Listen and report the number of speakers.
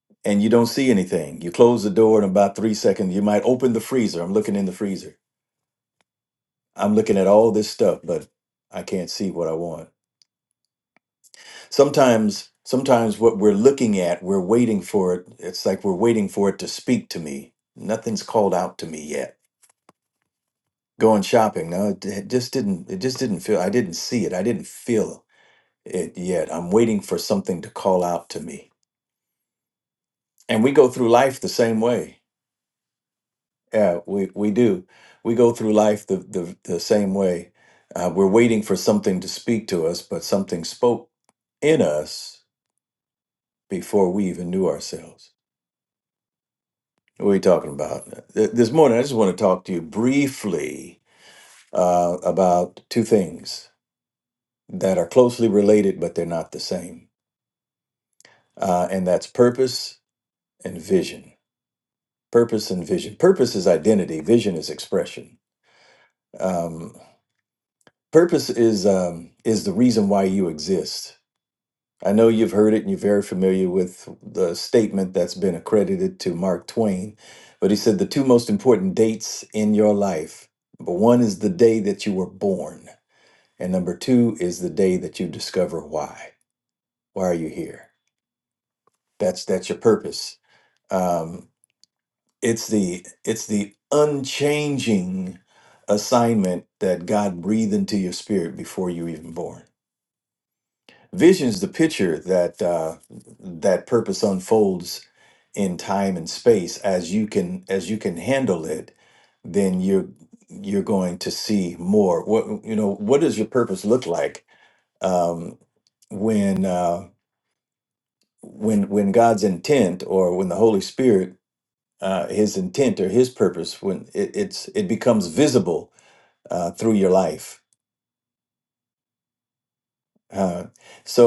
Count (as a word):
one